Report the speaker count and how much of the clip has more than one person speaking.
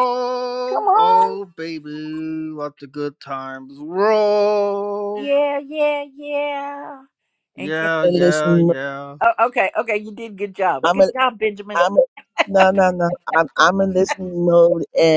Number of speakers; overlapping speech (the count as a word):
three, about 14%